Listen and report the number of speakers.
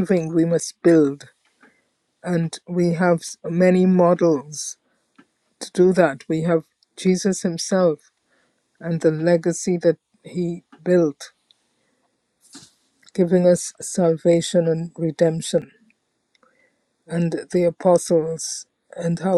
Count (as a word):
one